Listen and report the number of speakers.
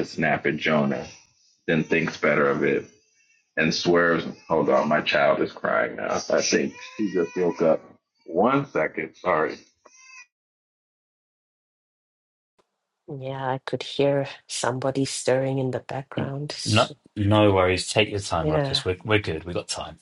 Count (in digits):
3